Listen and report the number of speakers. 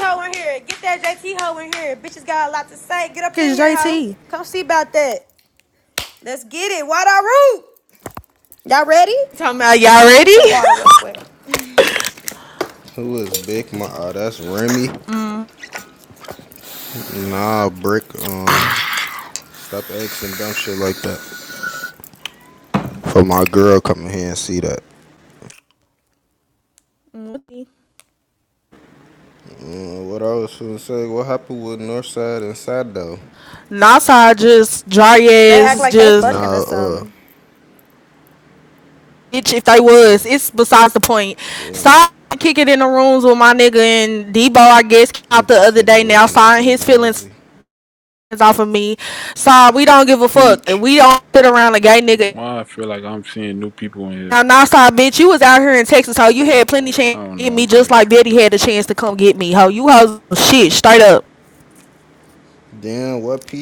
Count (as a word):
four